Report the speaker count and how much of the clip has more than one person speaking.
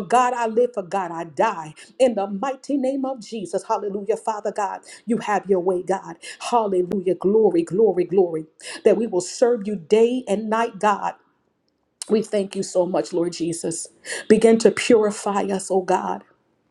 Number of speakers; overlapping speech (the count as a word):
one, no overlap